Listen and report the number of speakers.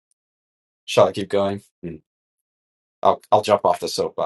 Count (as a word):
one